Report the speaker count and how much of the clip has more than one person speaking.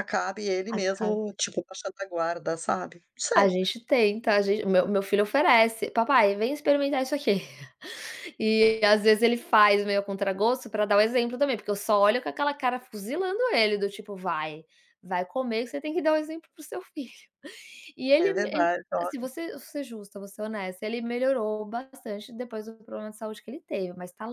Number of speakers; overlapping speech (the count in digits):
2, about 6%